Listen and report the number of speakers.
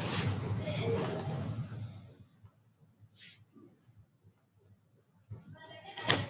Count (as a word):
zero